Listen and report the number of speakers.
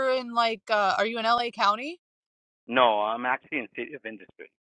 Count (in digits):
2